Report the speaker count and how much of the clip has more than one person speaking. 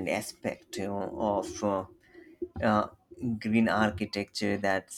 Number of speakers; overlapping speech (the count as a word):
one, no overlap